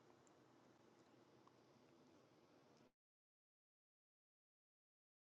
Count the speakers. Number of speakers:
0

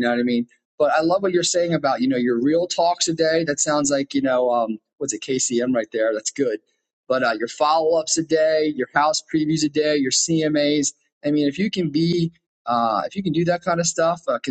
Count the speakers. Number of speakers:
1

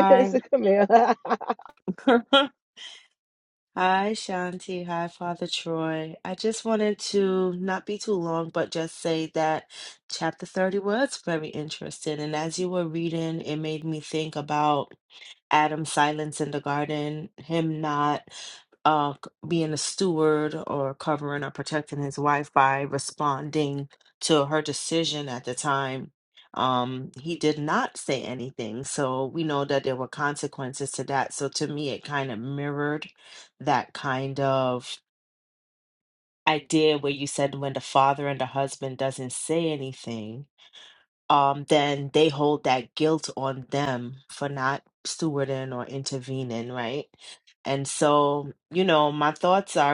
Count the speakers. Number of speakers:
2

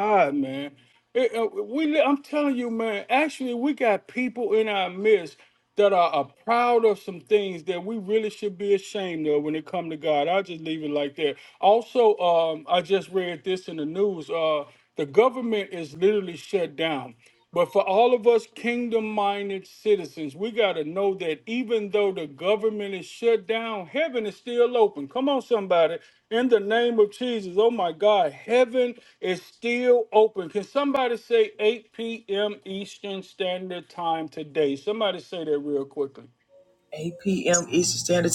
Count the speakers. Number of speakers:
2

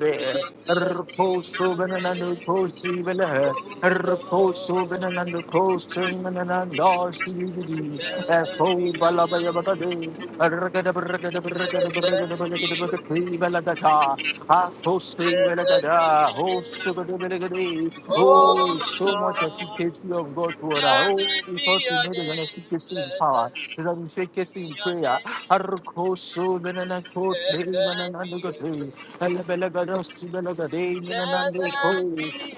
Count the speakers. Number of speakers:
2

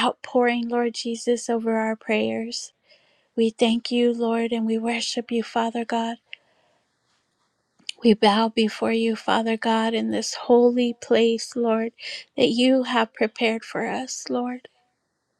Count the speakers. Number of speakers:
1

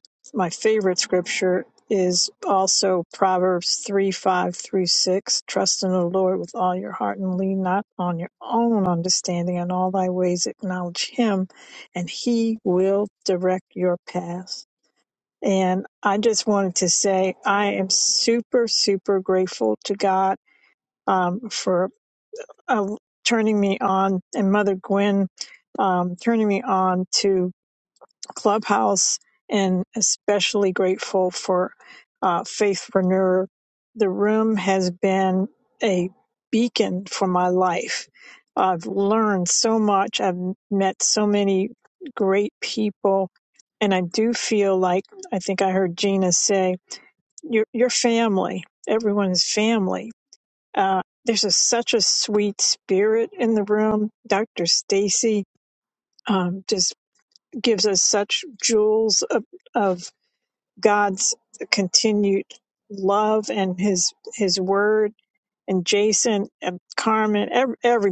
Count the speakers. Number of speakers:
1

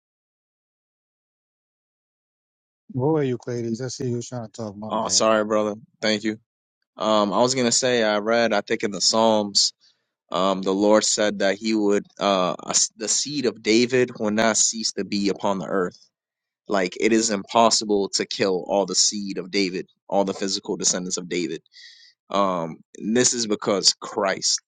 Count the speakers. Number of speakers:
2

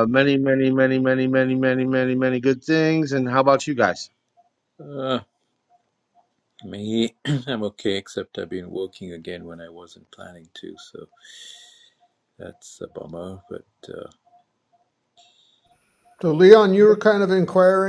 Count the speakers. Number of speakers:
3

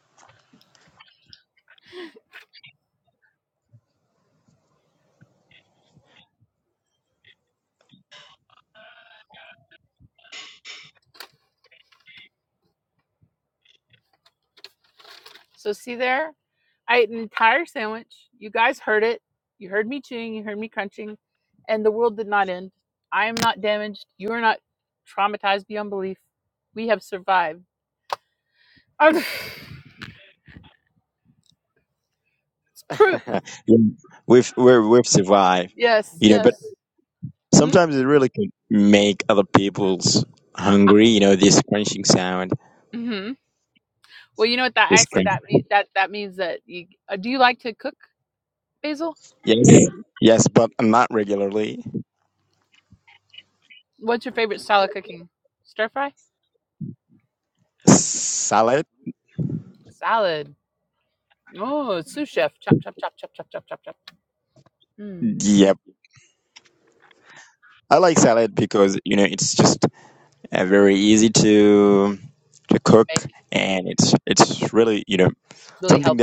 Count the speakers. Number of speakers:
2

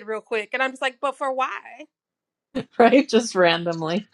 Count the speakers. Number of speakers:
2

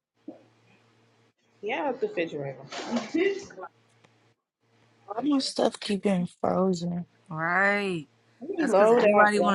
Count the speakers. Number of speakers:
3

